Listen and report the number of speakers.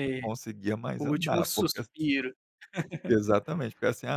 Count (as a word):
two